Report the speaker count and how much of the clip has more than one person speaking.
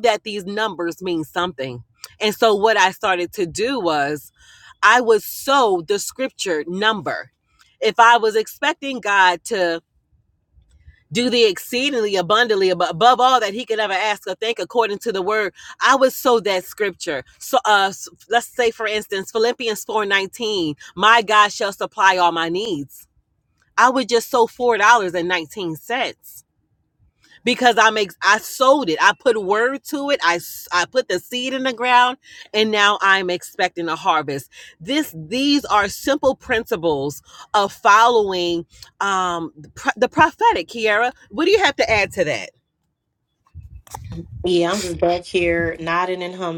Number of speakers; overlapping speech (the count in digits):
2, no overlap